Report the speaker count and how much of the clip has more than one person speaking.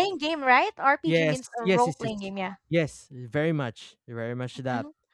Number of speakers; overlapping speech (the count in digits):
2, about 23%